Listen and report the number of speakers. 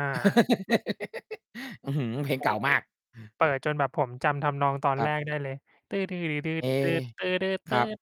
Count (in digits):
2